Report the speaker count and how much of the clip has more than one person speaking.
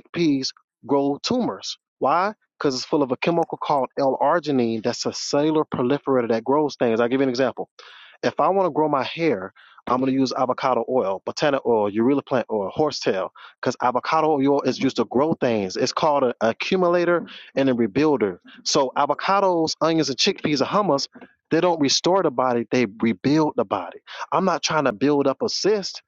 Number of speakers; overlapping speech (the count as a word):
one, no overlap